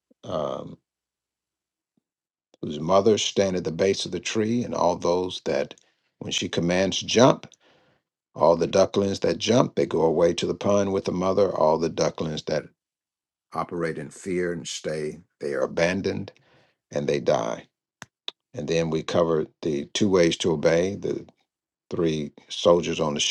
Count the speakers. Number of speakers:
1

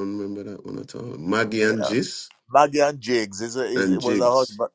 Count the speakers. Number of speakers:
2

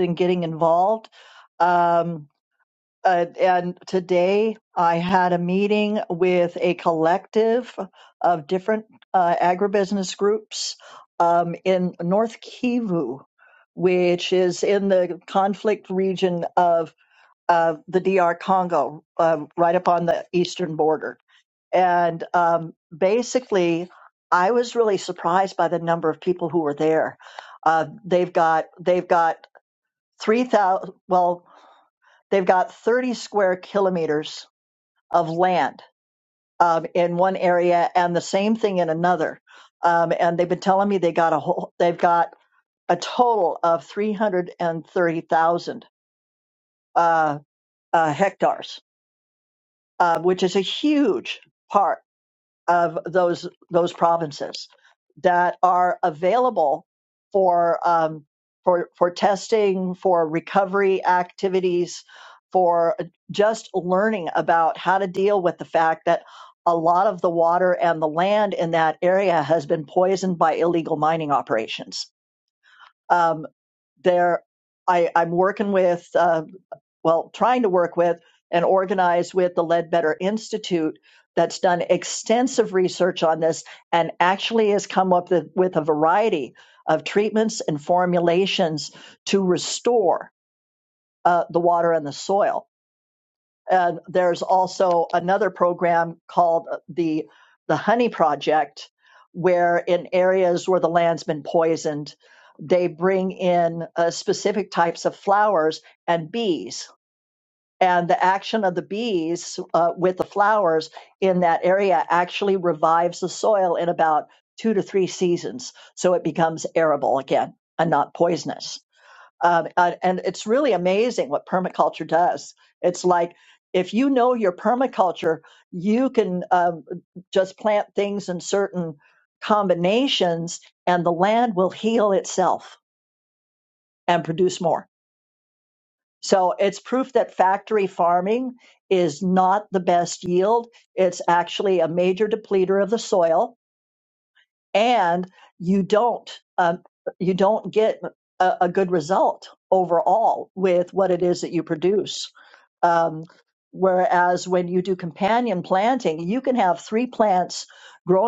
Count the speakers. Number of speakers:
1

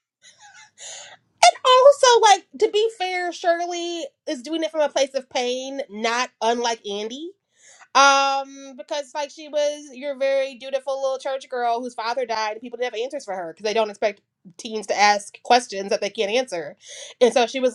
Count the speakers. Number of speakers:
1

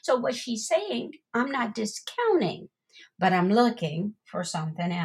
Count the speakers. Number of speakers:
1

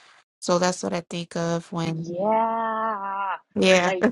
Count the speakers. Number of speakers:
2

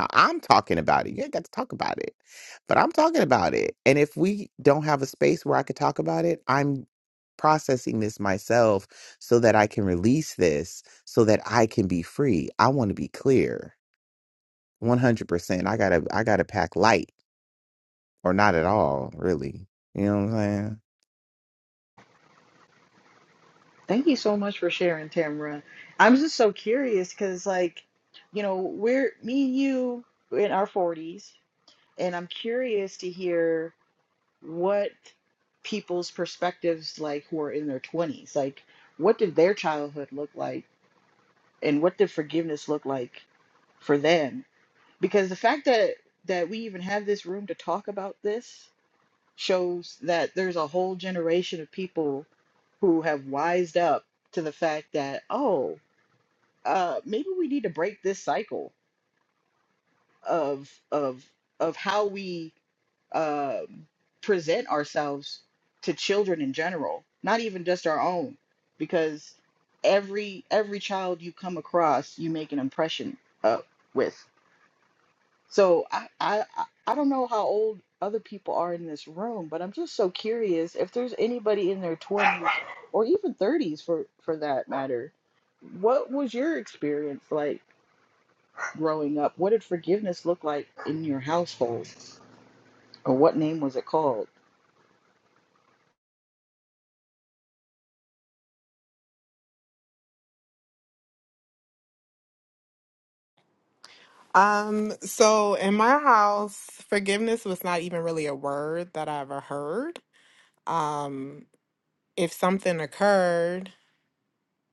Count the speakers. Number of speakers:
3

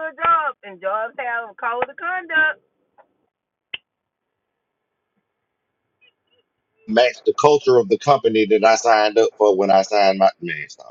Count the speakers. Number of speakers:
2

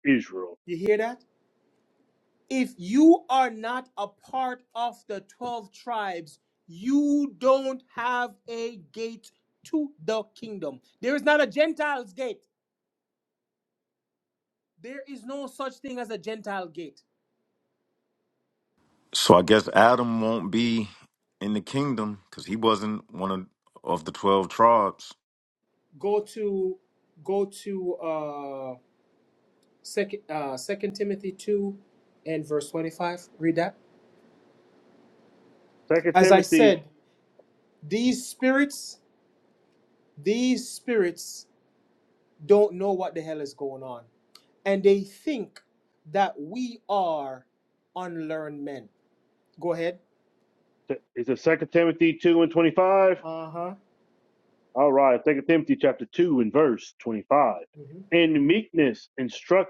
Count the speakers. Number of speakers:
3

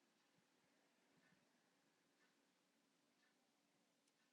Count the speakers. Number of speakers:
0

